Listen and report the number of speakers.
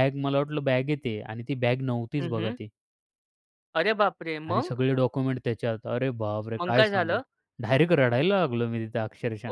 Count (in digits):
2